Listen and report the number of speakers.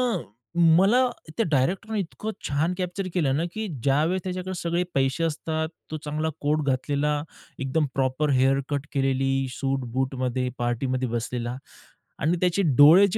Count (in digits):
1